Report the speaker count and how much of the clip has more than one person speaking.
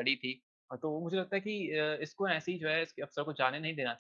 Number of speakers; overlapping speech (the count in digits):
1, no overlap